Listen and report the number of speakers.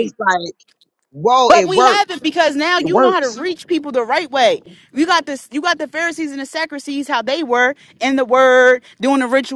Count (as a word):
two